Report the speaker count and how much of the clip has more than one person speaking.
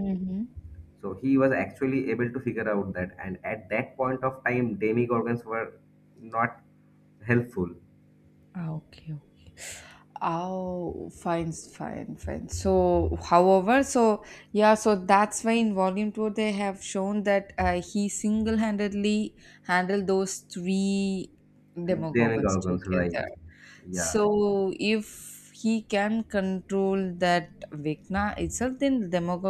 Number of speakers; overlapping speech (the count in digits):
2, about 5%